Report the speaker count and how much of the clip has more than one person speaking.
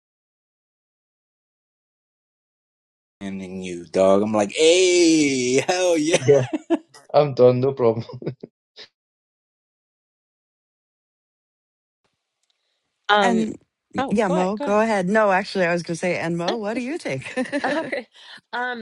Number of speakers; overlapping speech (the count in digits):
4, about 5%